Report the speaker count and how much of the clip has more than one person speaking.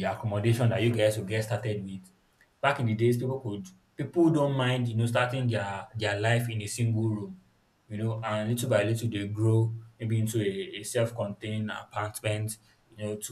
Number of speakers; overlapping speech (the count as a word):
one, no overlap